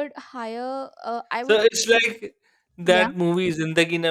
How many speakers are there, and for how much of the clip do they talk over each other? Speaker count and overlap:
two, about 9%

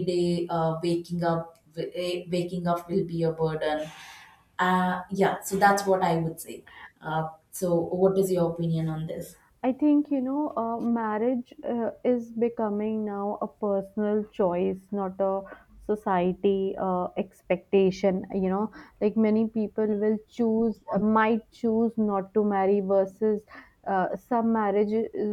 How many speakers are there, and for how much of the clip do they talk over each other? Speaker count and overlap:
two, no overlap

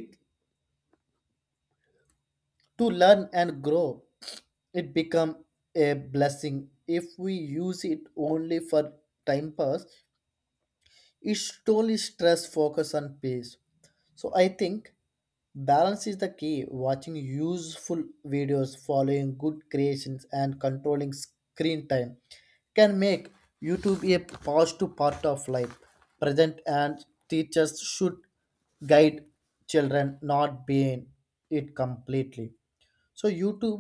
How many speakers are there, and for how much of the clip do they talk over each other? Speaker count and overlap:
one, no overlap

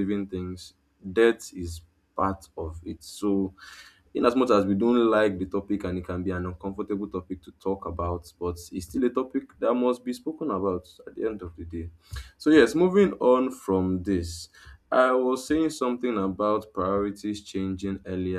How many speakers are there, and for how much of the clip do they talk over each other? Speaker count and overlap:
one, no overlap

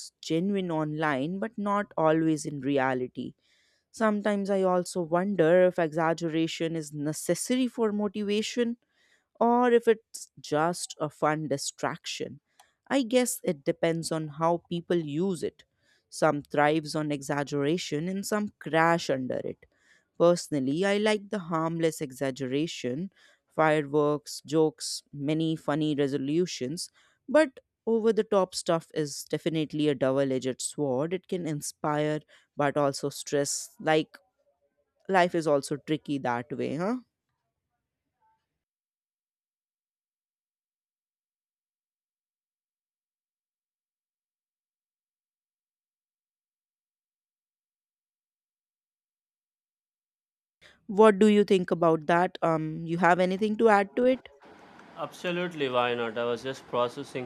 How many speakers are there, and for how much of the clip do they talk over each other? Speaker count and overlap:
two, no overlap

